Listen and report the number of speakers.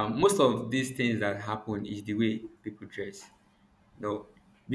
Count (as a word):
one